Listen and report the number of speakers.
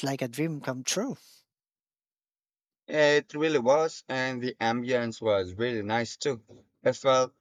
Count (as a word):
two